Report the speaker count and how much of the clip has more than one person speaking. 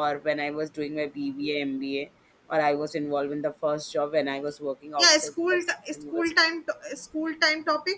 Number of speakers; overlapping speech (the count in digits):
2, about 16%